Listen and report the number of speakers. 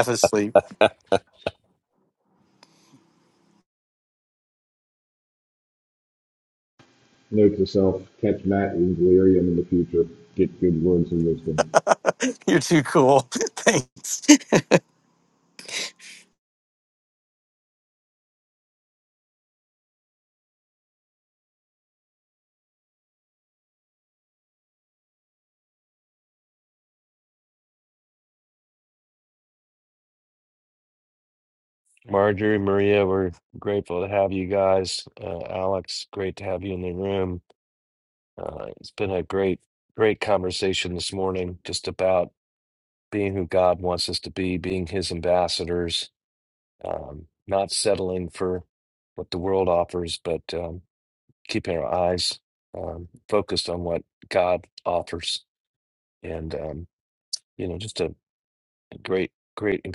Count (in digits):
3